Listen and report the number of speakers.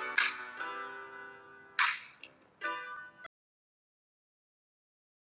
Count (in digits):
0